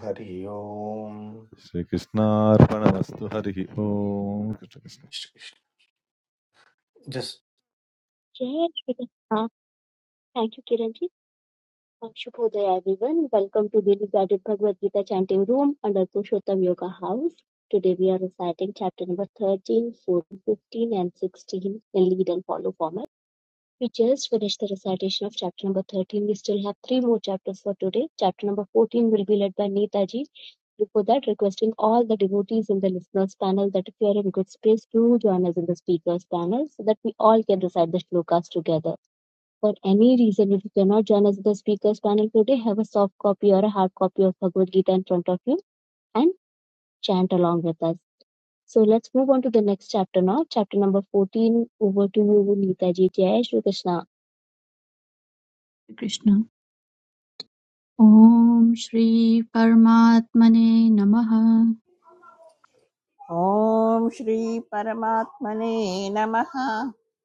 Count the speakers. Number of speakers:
five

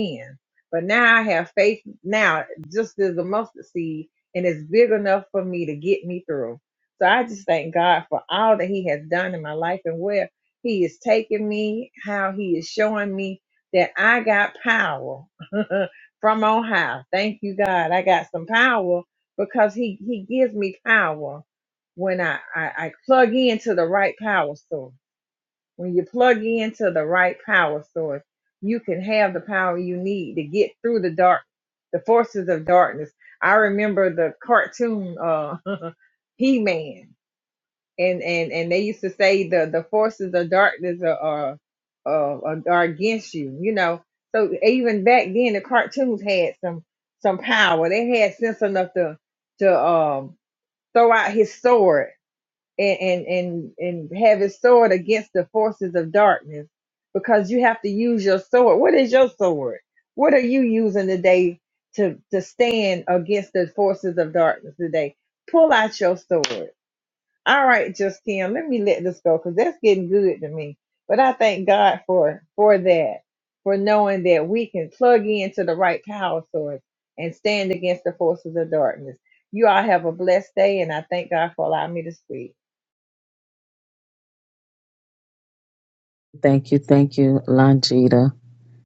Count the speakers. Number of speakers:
two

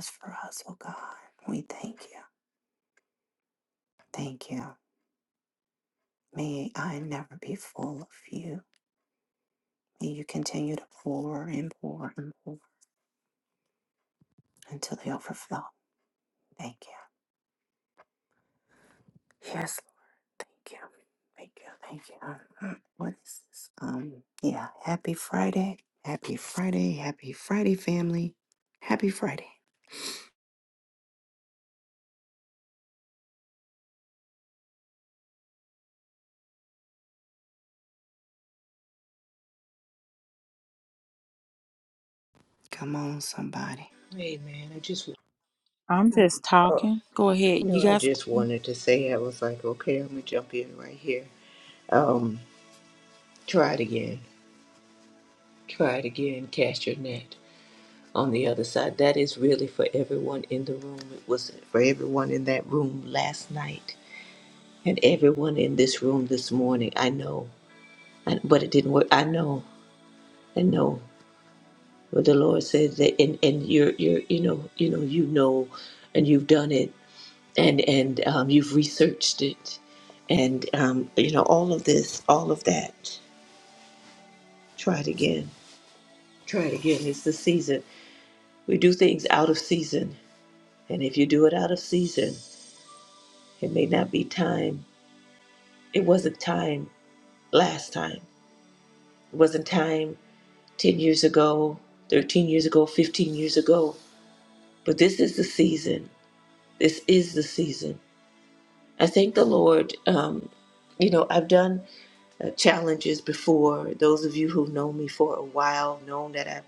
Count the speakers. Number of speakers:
three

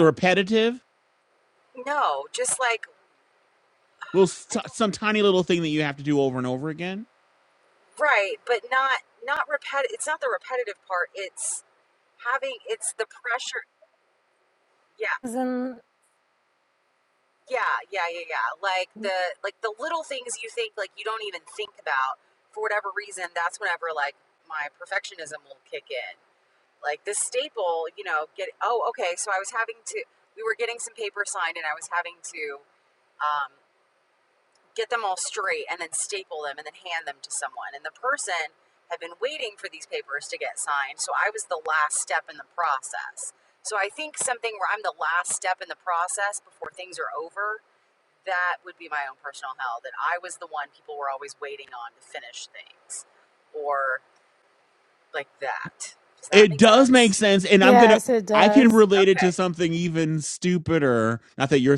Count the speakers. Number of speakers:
three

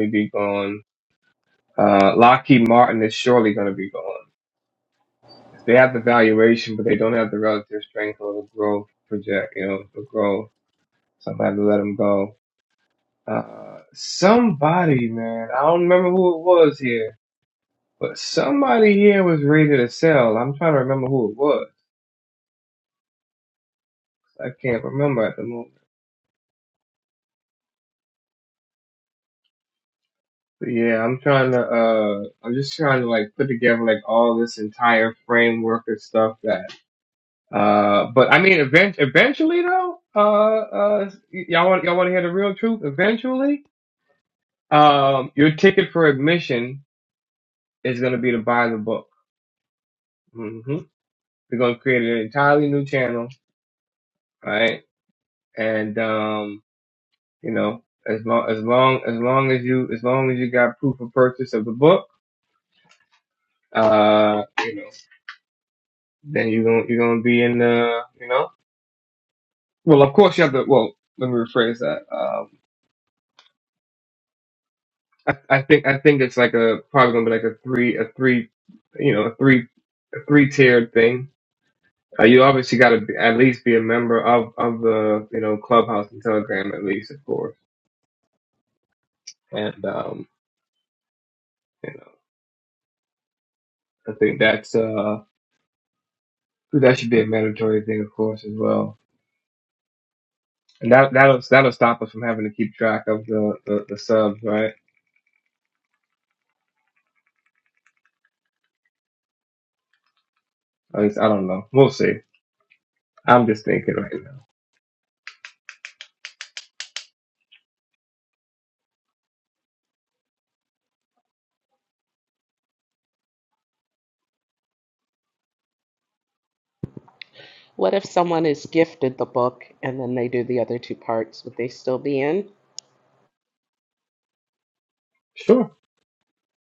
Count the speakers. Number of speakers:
two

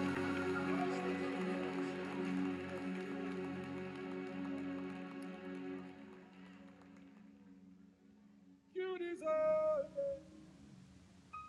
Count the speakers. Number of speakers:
zero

